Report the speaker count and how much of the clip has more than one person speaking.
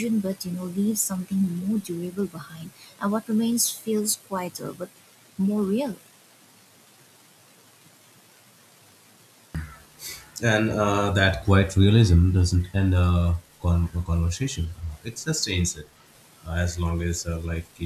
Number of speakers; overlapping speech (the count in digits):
2, no overlap